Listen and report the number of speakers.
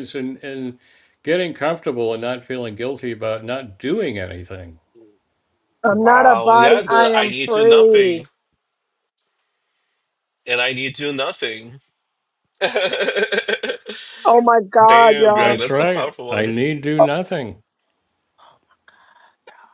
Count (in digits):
3